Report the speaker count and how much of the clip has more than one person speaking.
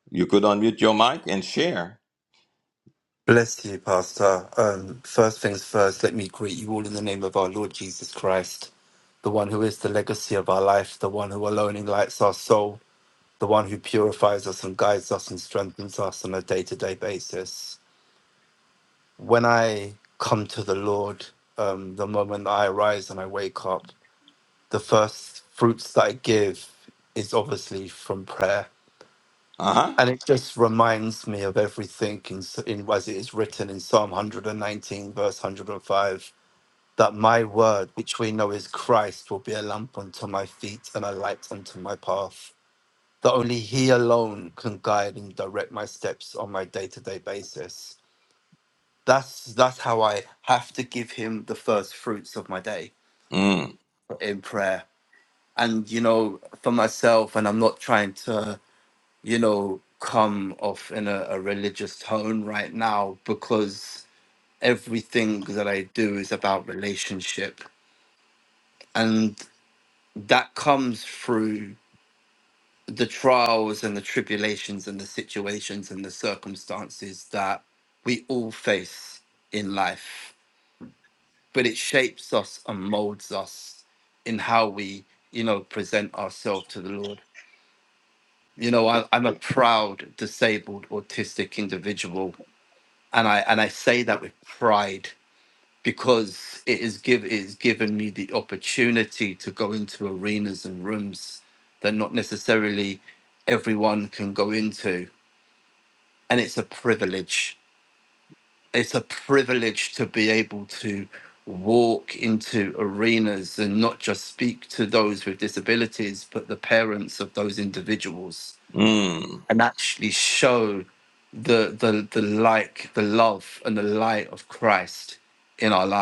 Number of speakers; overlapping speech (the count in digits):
2, under 1%